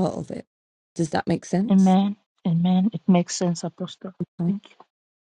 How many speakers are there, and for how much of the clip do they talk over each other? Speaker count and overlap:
2, about 3%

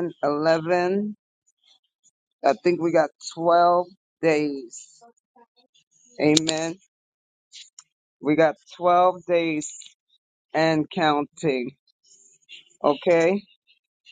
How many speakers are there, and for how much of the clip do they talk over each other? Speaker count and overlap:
1, no overlap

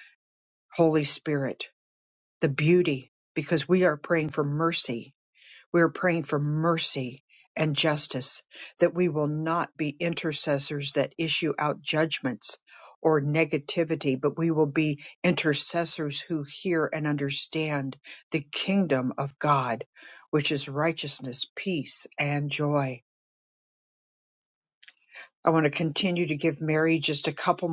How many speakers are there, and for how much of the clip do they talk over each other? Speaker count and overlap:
1, no overlap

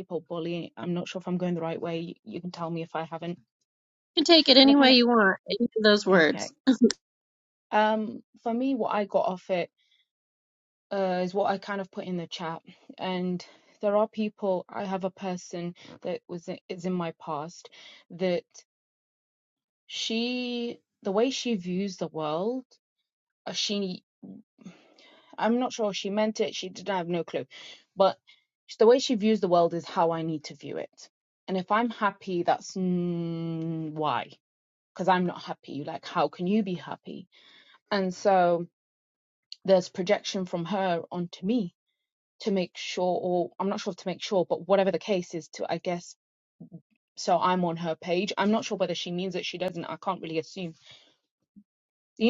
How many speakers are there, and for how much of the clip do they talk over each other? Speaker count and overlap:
2, about 1%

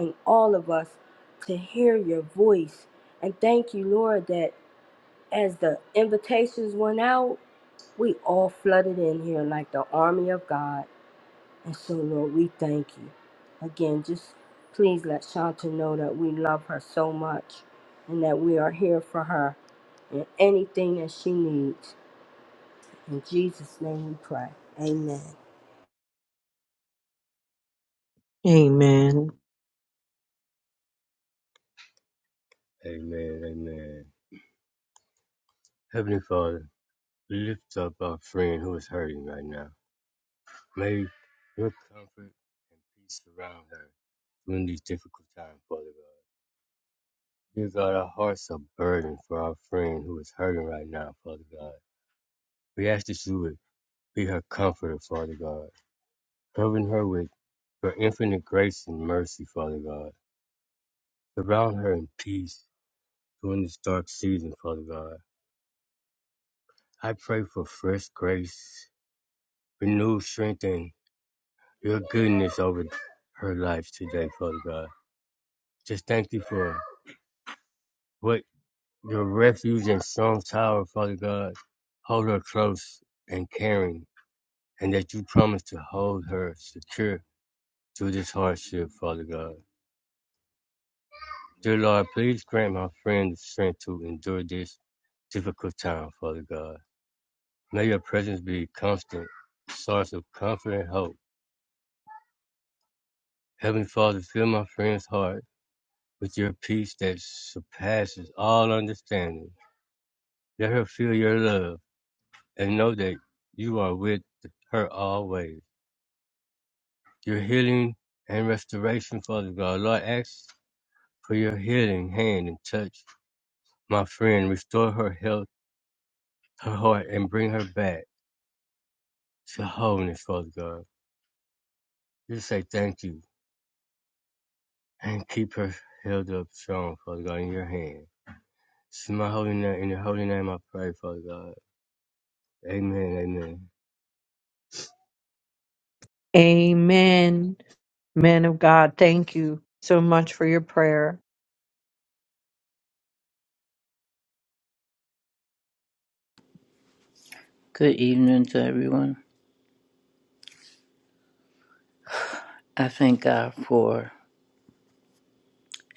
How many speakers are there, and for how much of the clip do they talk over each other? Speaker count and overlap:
4, no overlap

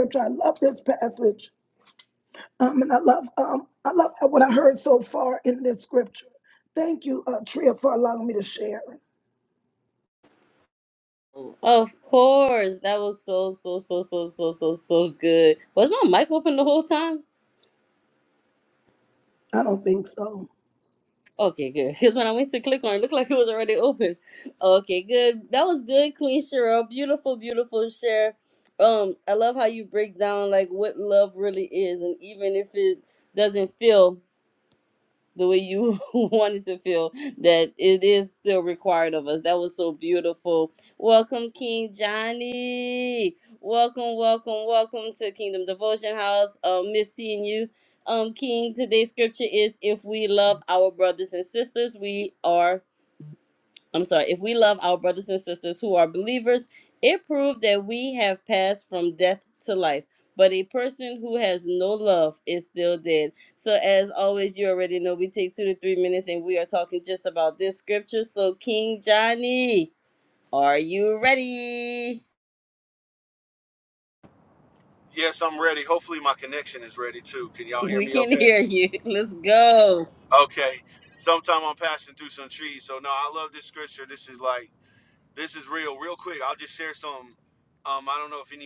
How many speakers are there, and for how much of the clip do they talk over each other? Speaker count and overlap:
3, about 1%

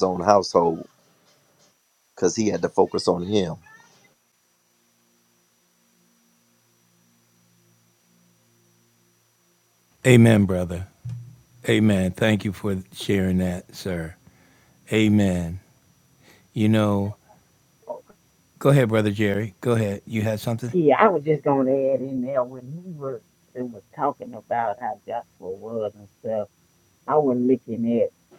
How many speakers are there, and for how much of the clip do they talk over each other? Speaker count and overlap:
3, no overlap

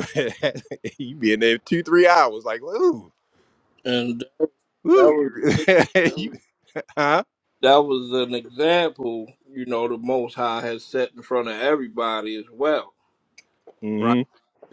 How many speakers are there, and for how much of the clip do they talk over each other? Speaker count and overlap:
2, about 2%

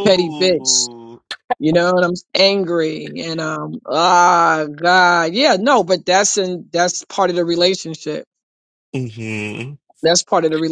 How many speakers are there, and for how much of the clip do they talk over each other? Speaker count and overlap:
2, about 8%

